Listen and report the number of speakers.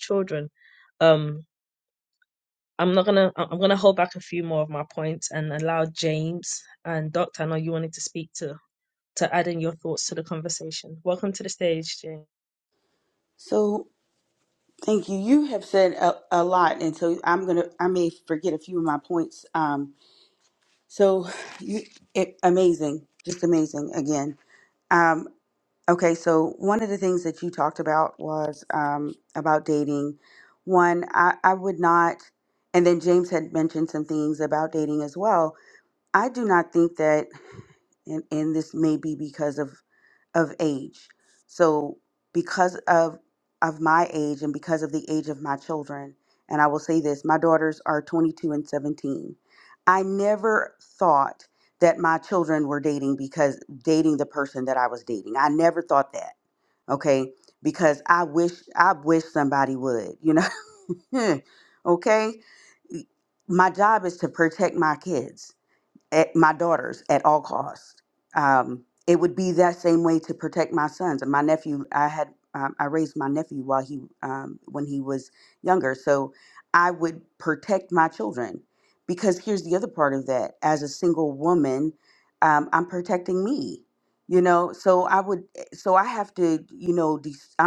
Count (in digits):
2